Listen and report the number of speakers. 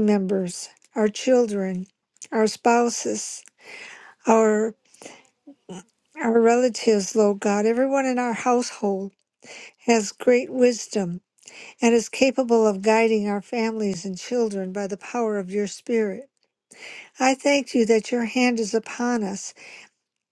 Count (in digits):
1